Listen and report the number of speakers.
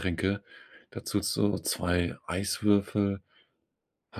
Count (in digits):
1